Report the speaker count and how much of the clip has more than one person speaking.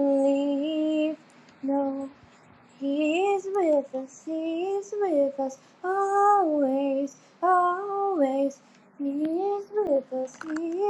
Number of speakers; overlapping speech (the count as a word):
one, no overlap